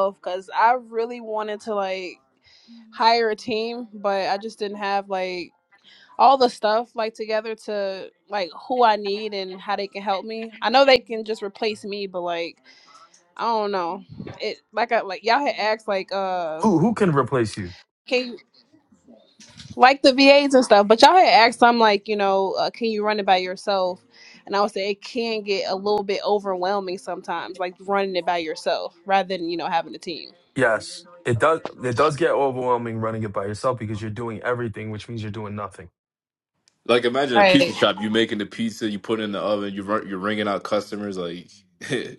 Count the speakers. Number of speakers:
three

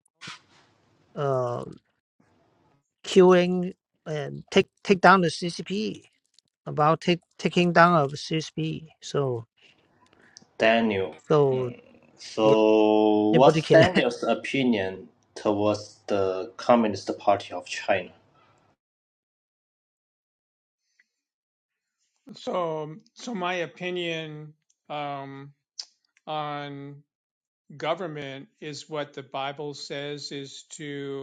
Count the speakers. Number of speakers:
three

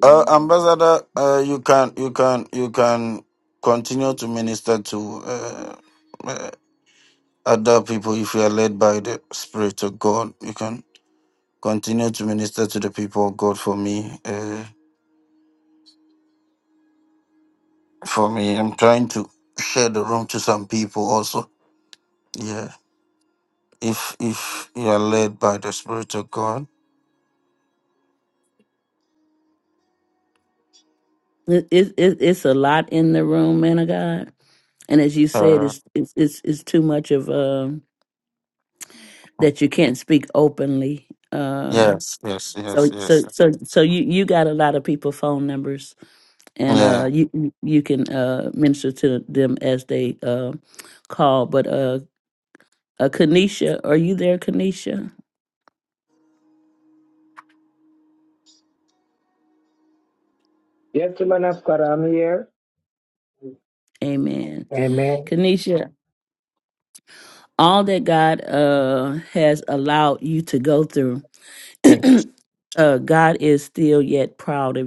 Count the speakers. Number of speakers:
three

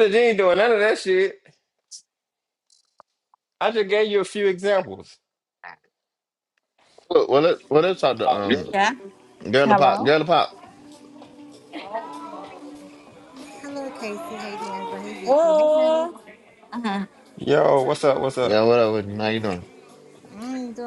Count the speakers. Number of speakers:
four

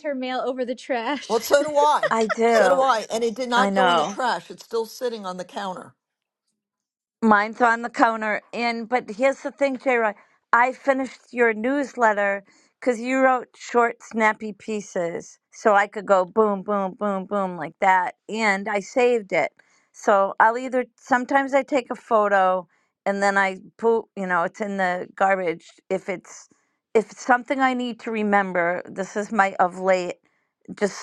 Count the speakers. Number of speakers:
three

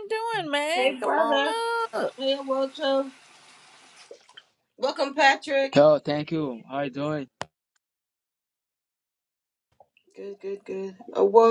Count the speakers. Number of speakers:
three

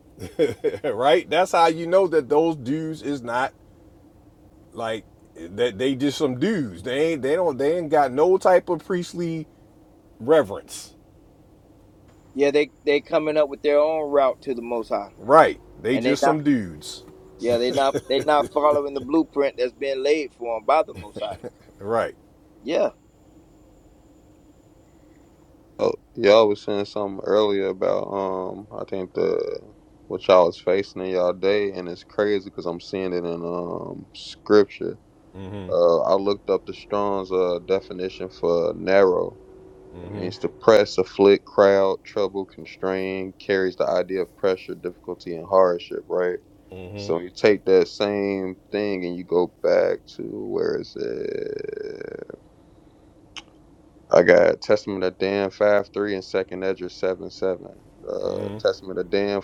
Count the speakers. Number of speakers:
three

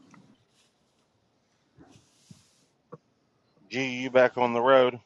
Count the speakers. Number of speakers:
one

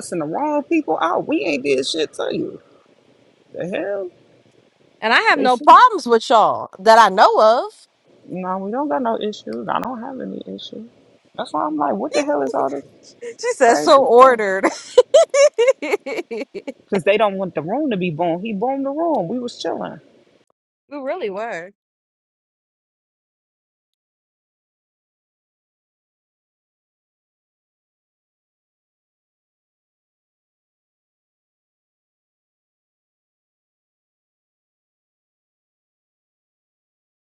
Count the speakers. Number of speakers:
two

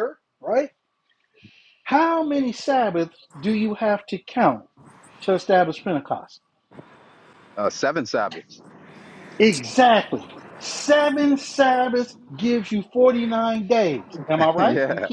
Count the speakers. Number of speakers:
two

